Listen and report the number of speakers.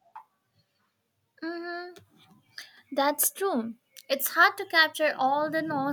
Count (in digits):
1